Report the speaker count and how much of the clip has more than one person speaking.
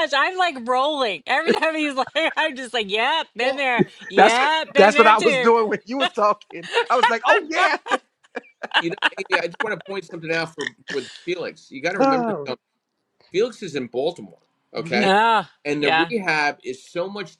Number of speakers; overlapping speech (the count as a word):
three, about 16%